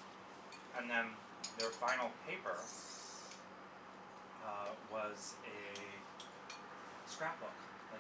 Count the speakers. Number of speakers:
1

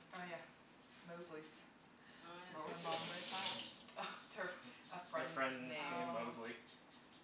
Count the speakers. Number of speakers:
3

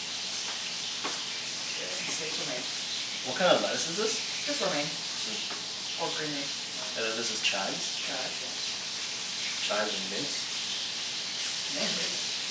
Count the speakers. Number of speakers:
2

